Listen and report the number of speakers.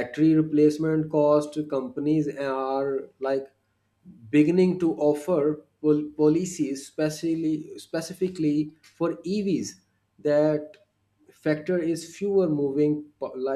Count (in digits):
1